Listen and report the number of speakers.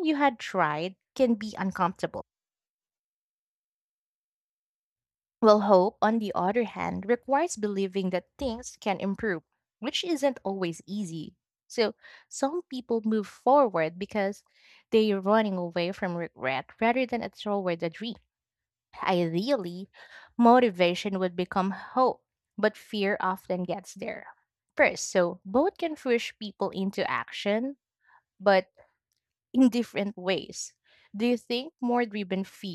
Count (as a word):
one